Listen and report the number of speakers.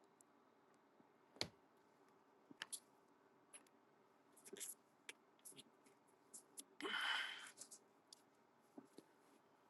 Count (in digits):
0